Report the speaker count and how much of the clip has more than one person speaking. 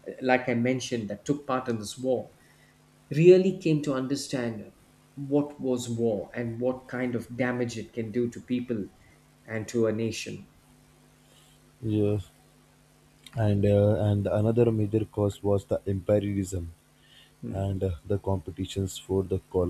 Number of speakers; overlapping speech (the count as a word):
two, under 1%